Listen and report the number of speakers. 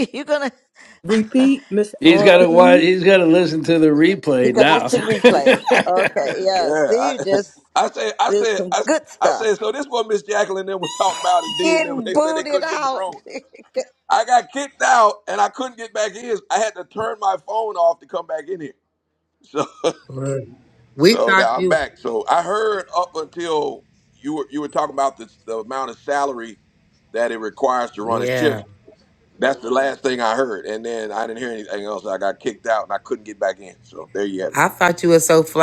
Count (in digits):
5